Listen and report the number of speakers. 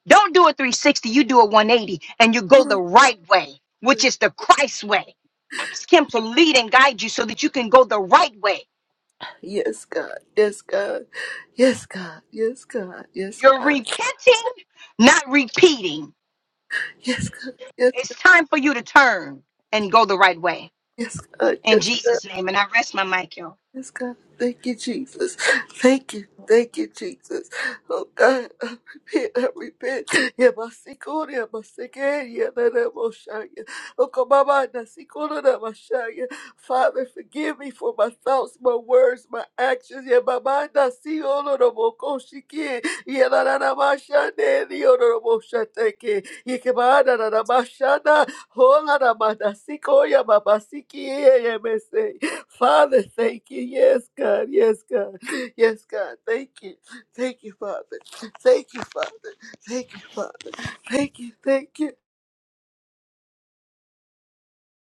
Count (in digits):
2